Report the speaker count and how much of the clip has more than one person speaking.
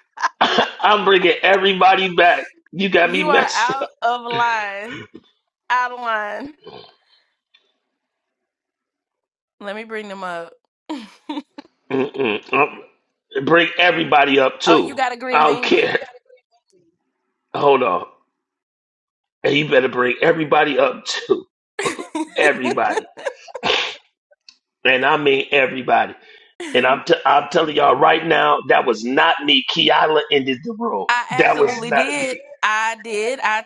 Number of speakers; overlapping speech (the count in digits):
2, about 10%